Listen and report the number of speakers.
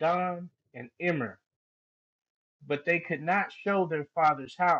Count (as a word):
one